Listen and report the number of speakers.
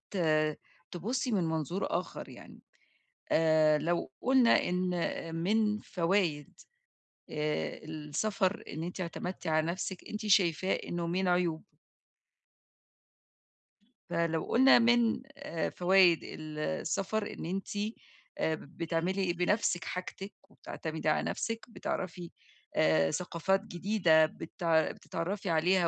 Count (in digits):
1